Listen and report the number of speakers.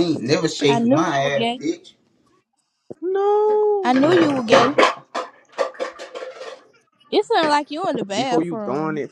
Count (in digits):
3